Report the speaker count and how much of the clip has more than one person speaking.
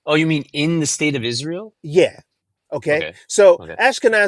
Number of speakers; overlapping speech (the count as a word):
two, about 9%